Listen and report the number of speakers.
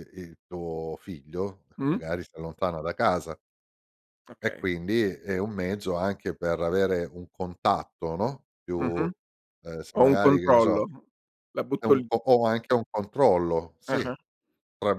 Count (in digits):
2